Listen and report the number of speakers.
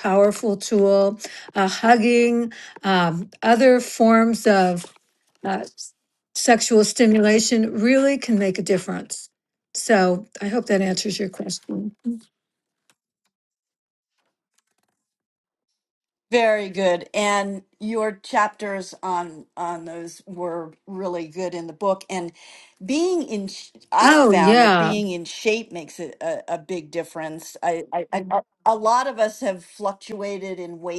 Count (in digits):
2